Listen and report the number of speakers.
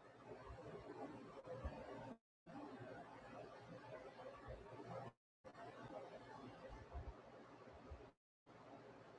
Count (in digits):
0